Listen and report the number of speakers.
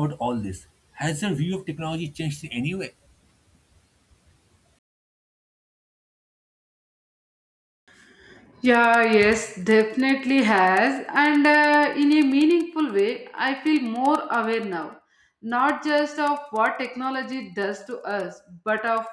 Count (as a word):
two